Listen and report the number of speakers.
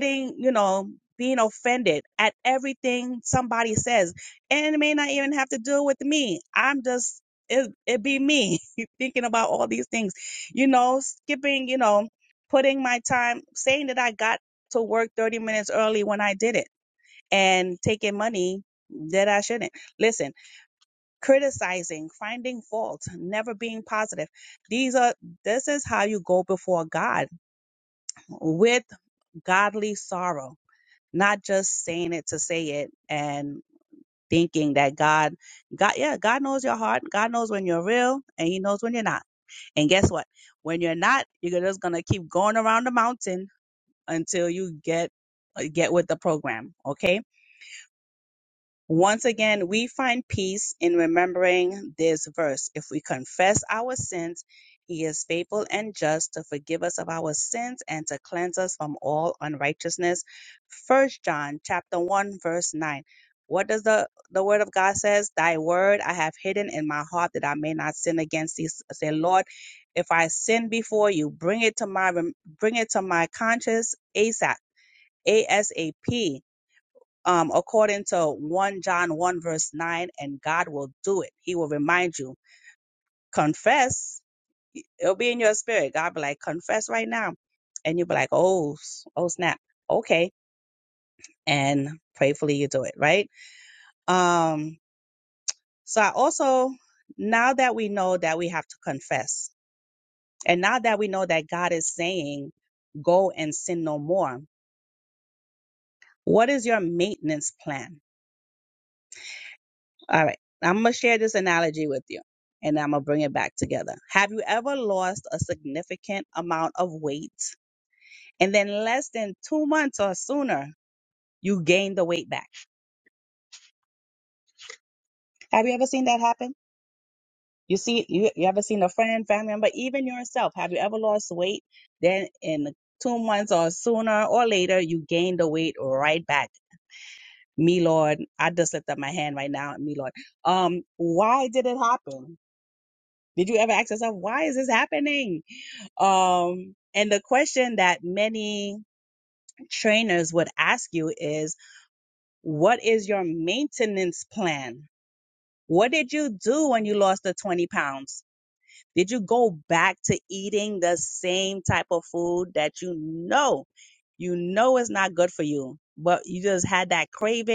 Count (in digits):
1